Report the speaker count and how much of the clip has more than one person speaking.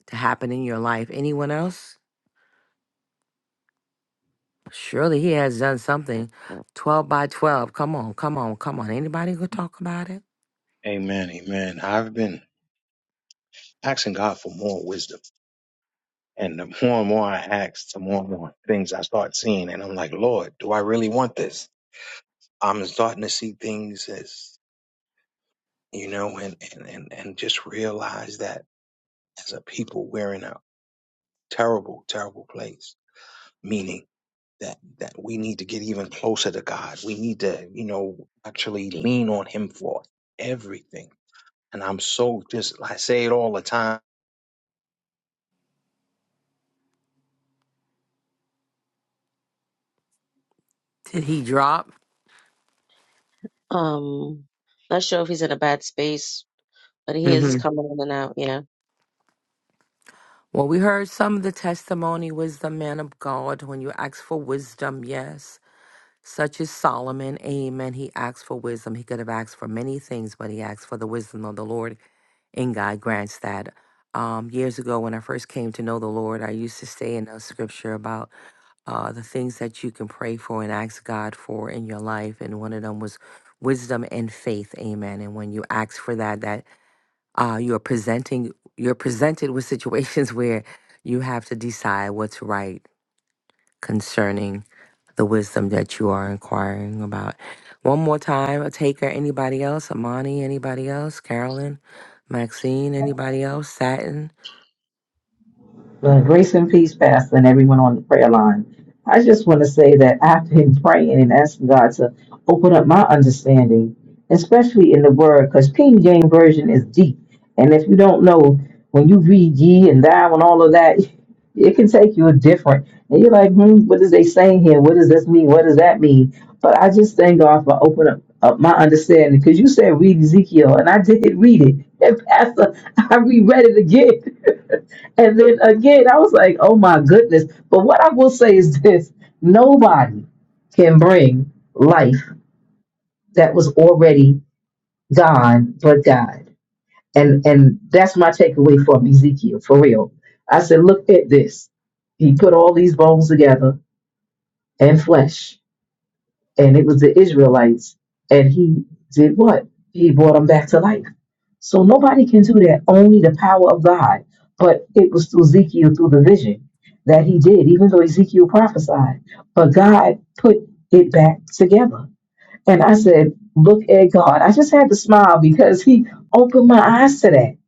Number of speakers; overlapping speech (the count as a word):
four, under 1%